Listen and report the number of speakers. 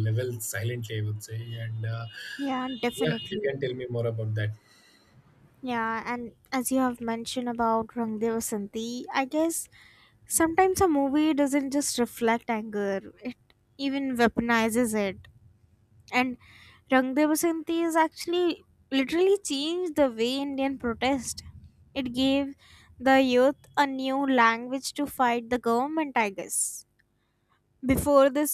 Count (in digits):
2